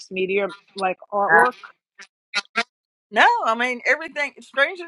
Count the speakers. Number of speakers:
2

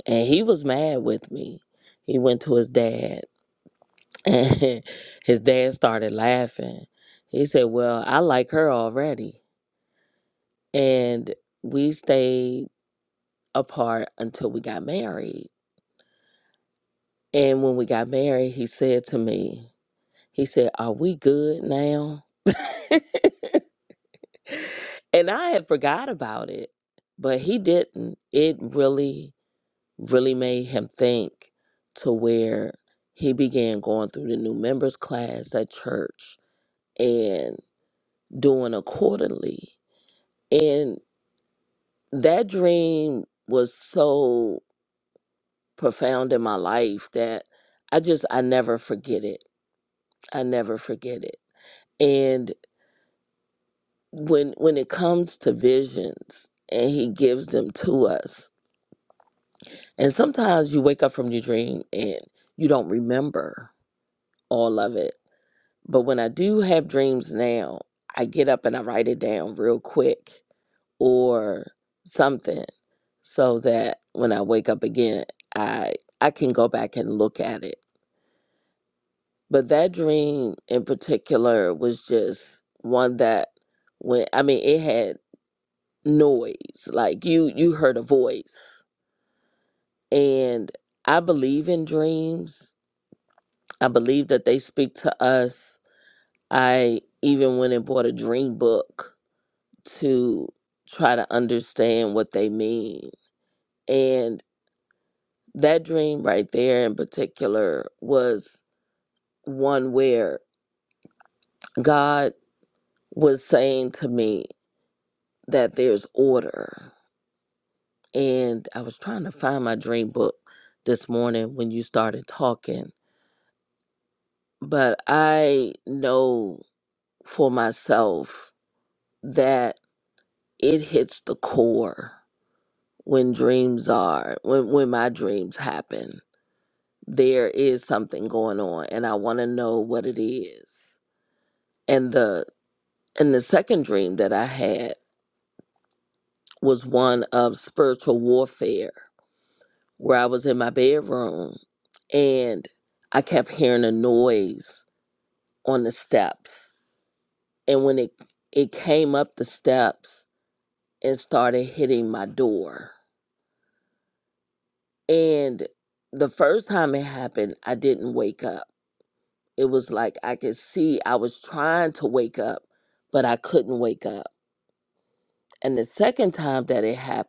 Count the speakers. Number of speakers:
1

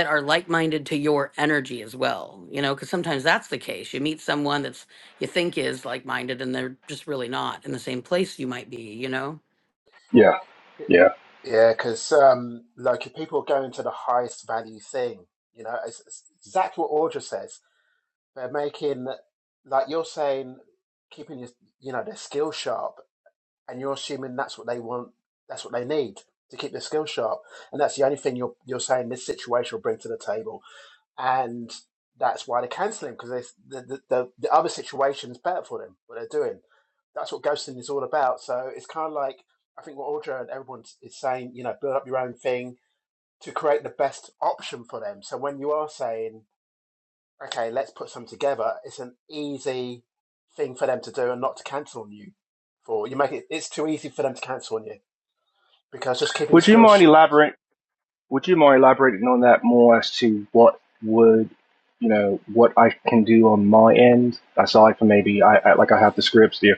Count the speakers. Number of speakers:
3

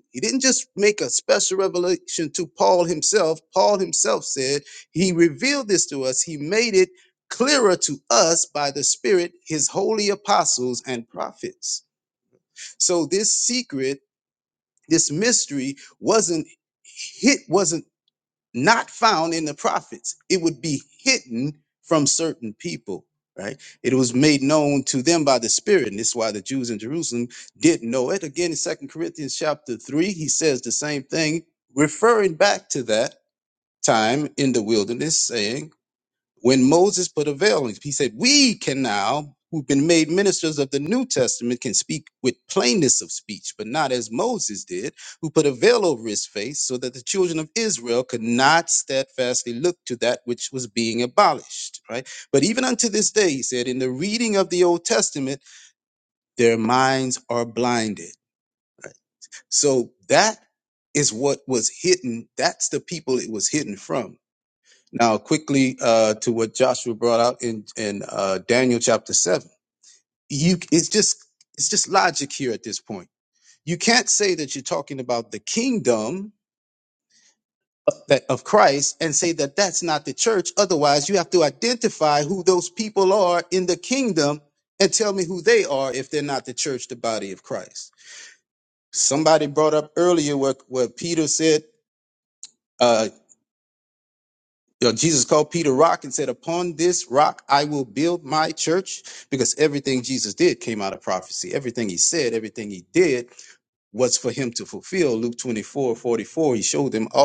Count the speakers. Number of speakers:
1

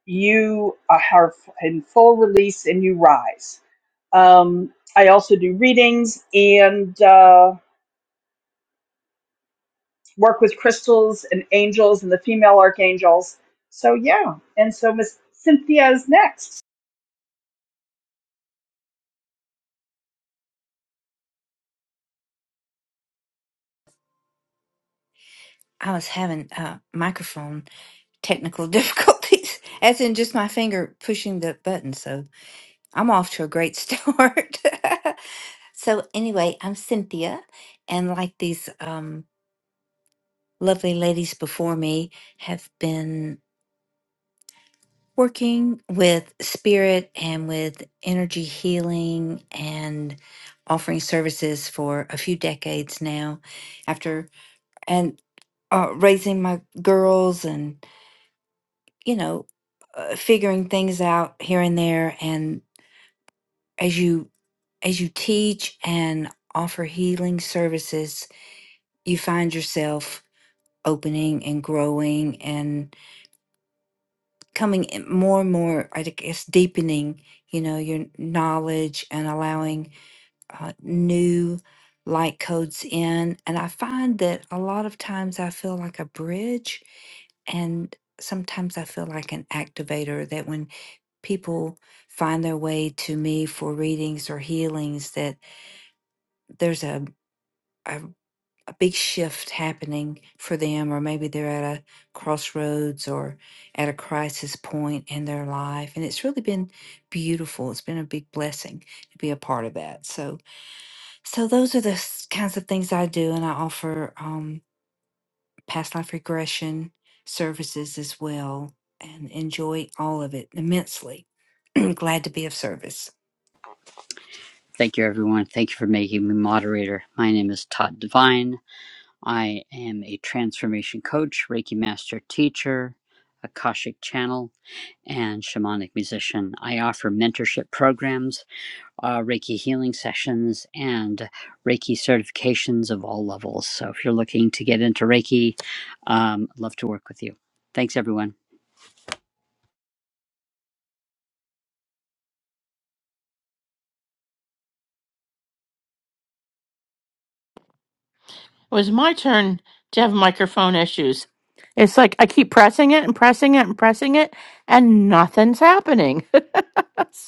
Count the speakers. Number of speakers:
4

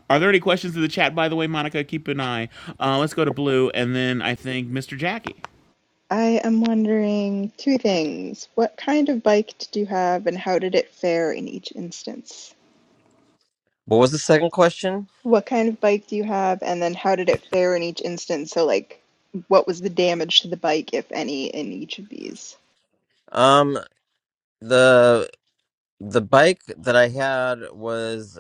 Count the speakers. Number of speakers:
3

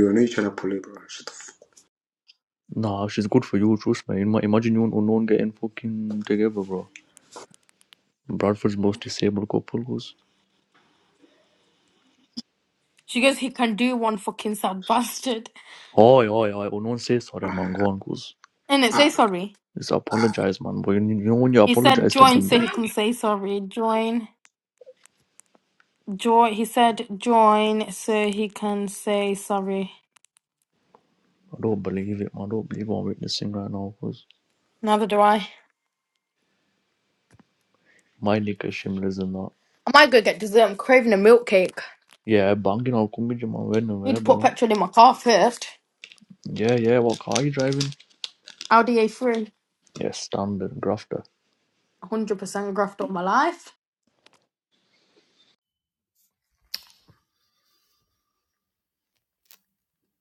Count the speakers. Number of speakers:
3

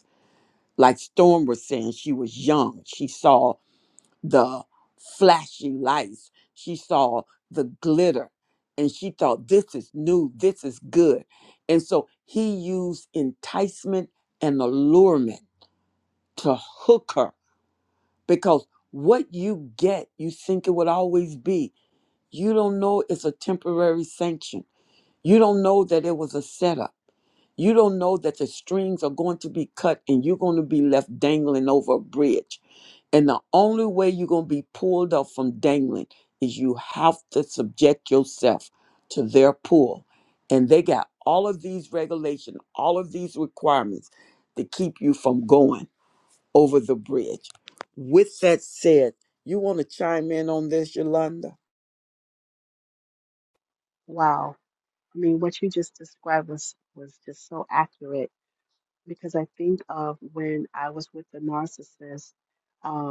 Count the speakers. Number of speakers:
2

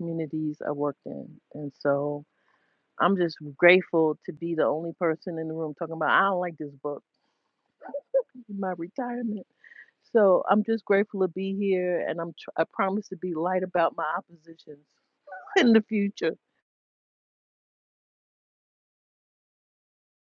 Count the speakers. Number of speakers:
1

